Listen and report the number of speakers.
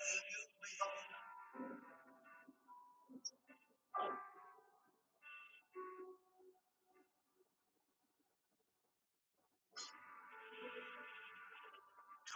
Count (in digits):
0